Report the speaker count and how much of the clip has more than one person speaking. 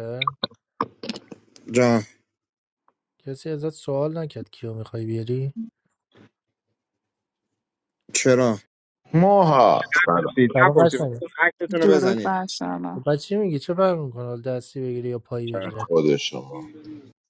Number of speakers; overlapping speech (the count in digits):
4, about 9%